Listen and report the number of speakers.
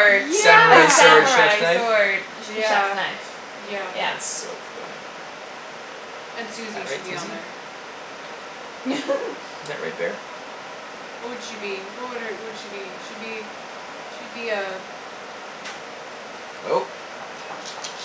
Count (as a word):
three